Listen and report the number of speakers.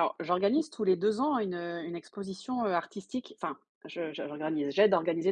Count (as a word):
one